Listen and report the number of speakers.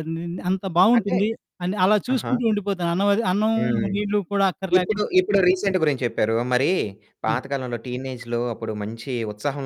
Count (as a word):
two